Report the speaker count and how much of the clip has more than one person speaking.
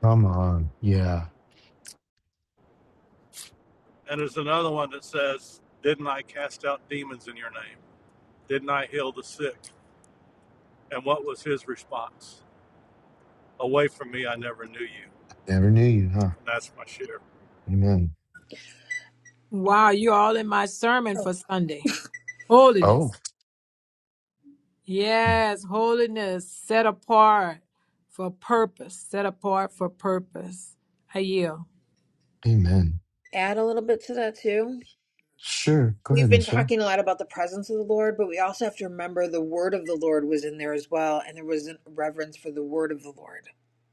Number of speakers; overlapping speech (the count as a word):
four, about 2%